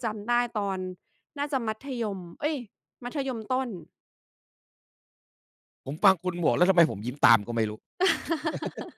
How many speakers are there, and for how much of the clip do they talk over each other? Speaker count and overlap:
2, no overlap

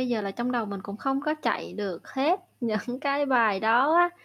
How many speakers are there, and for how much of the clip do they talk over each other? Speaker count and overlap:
1, no overlap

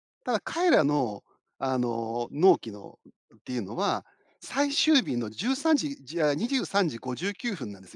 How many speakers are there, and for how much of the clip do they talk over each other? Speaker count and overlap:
1, no overlap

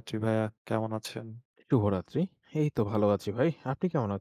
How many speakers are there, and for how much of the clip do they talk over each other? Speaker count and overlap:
2, no overlap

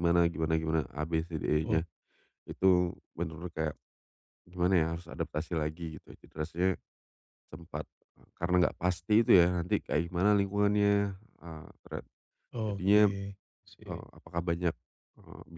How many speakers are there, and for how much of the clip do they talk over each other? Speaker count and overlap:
2, about 4%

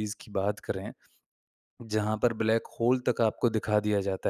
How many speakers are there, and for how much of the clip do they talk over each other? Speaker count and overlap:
1, no overlap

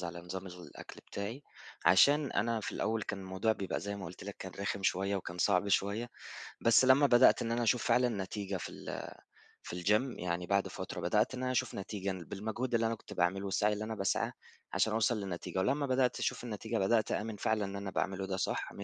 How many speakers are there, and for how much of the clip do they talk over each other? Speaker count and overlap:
1, no overlap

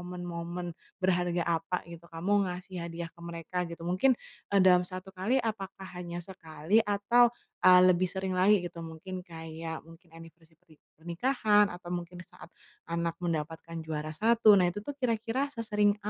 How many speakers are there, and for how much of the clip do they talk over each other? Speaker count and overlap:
1, no overlap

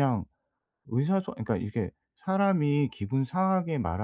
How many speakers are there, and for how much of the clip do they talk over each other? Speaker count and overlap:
1, no overlap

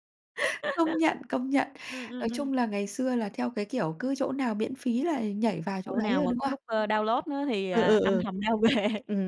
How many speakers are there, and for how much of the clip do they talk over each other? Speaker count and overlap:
2, about 16%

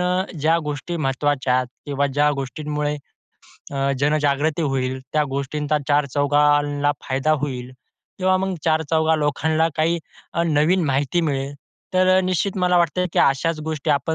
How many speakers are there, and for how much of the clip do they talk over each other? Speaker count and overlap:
1, no overlap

